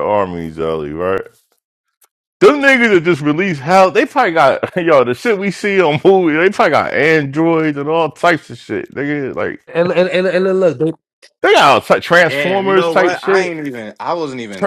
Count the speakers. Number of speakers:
3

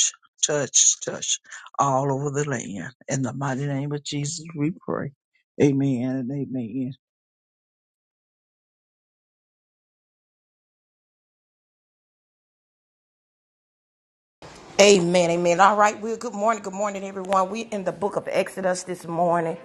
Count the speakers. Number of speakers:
2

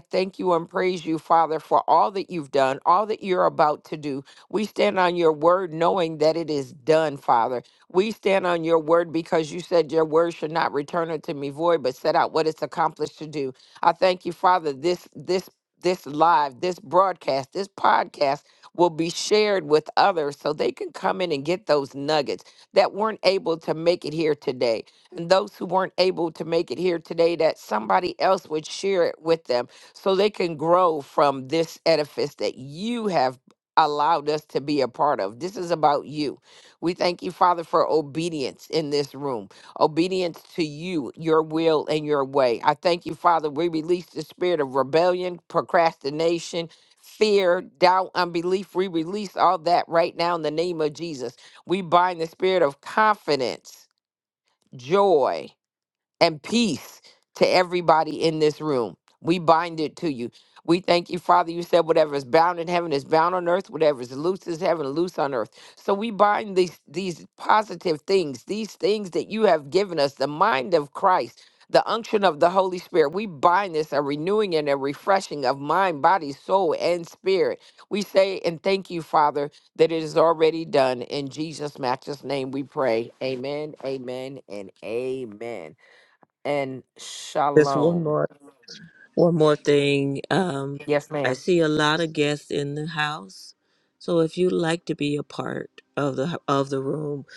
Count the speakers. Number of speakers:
2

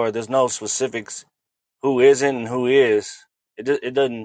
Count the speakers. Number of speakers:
1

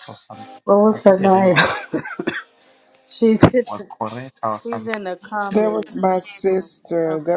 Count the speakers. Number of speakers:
3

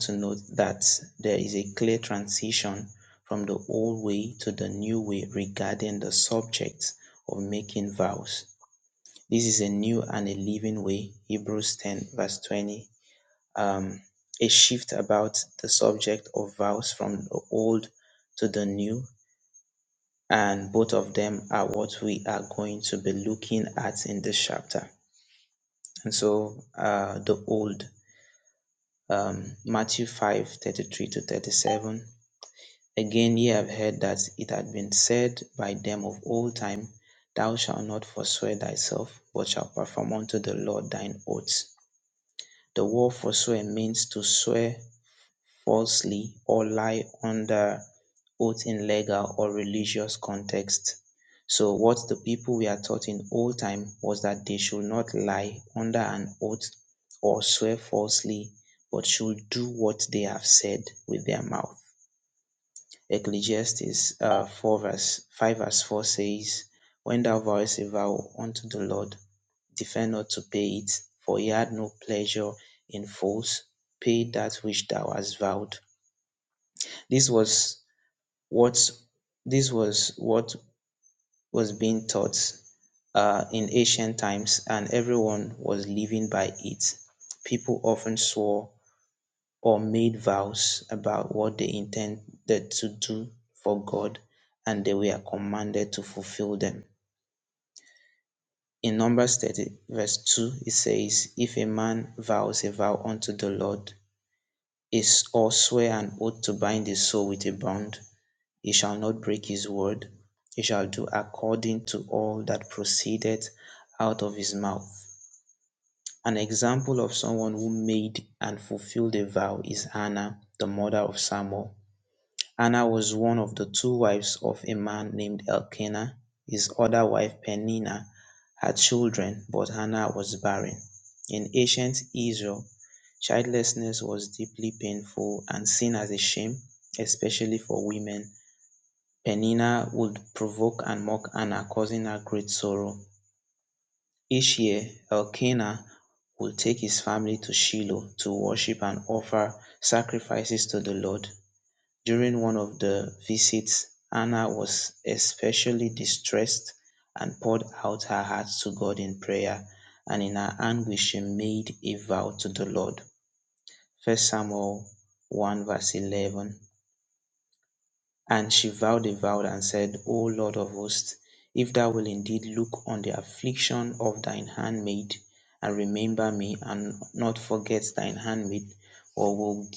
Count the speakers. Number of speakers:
1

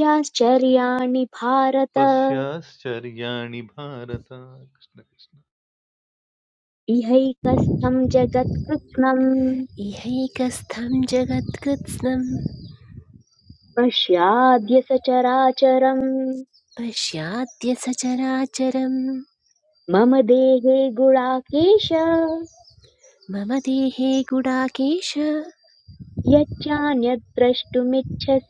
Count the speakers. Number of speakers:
3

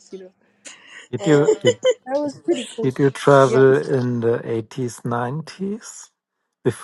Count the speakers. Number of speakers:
2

